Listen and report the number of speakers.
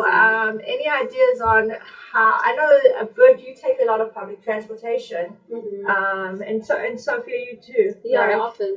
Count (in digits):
2